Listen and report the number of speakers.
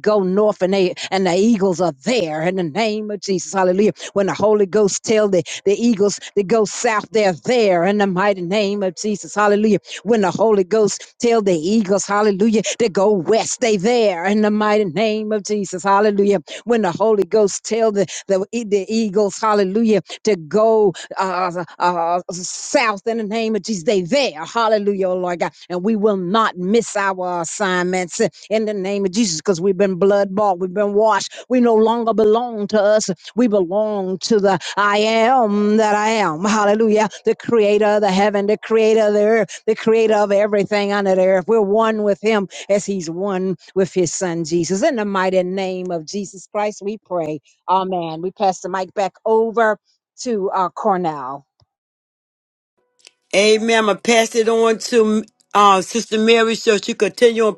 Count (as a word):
two